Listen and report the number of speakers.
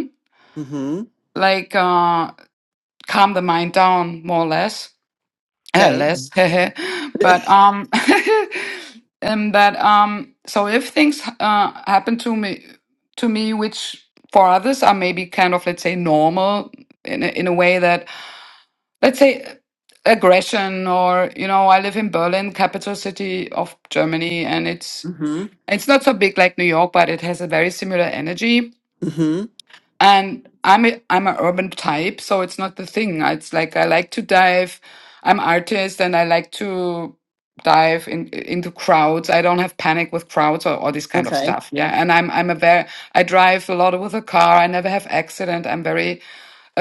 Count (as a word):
two